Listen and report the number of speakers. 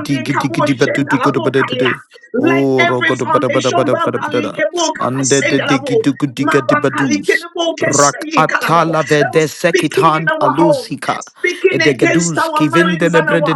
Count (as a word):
two